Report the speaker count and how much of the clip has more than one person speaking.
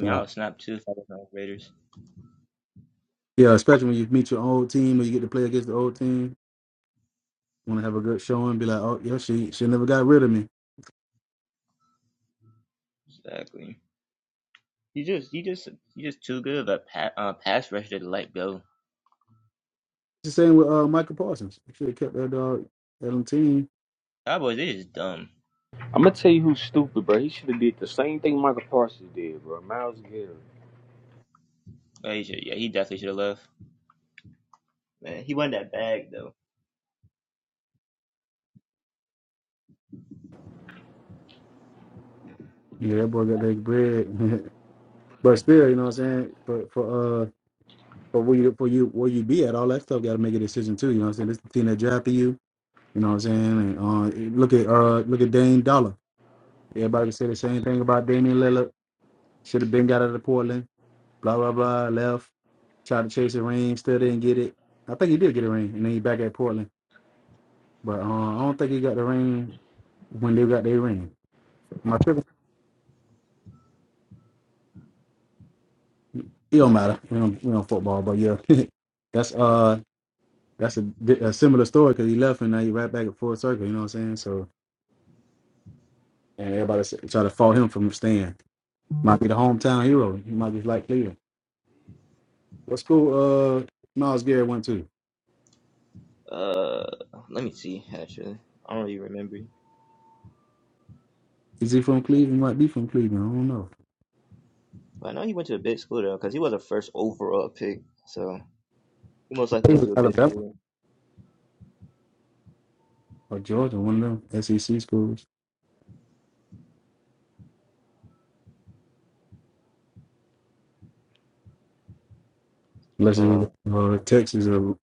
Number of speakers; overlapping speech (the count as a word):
three, about 1%